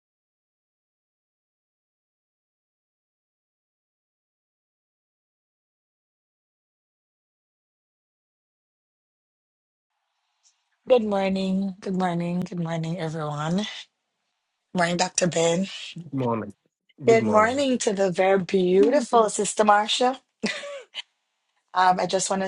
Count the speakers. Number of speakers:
2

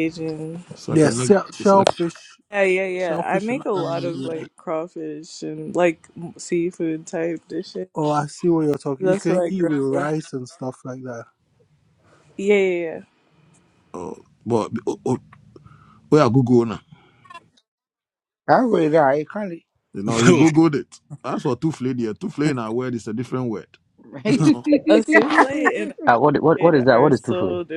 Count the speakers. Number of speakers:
5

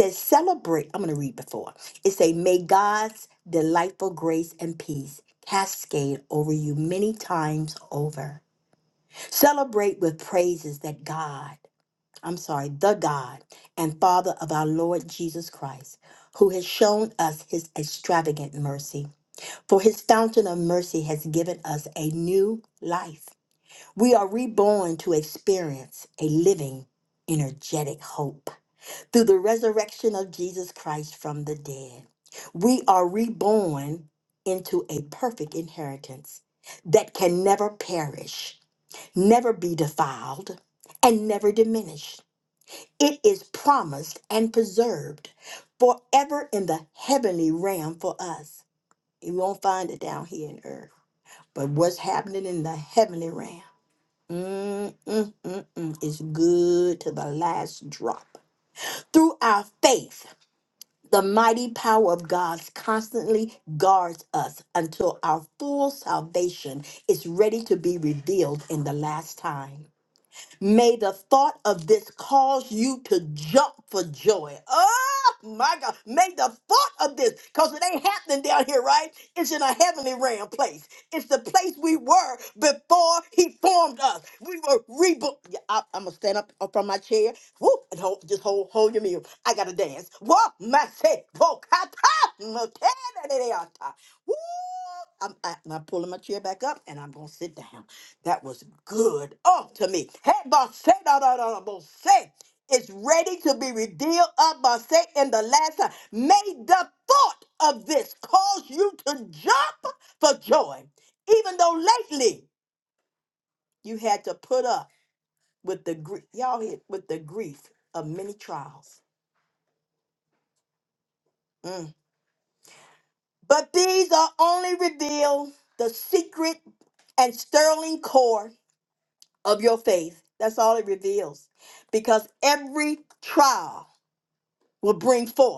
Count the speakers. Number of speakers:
1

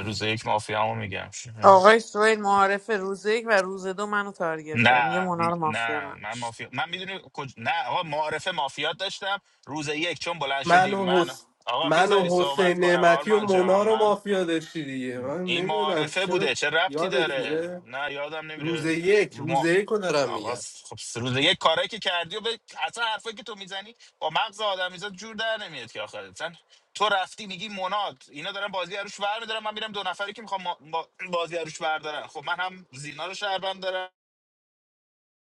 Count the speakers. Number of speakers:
3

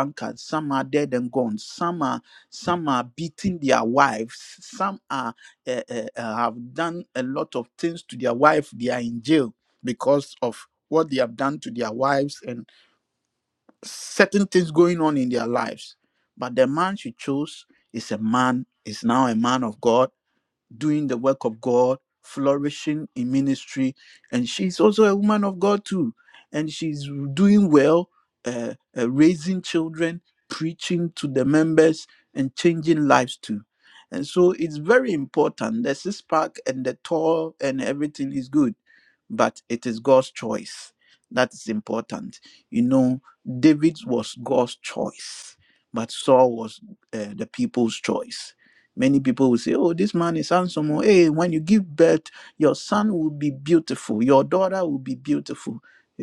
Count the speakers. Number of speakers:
1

